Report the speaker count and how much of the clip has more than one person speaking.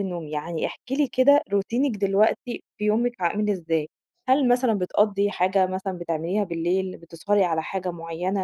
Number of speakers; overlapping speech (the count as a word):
one, no overlap